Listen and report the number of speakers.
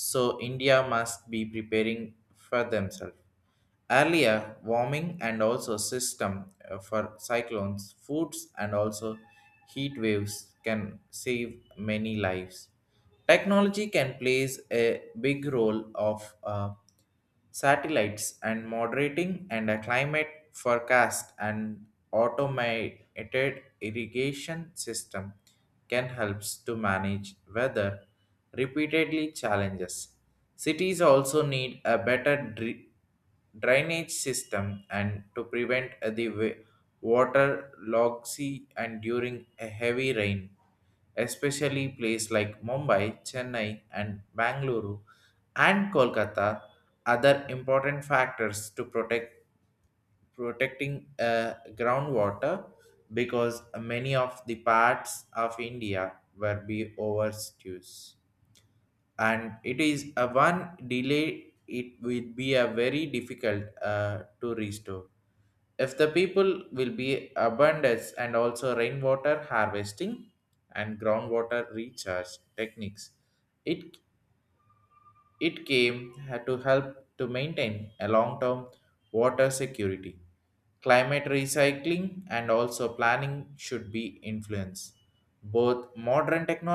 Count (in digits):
1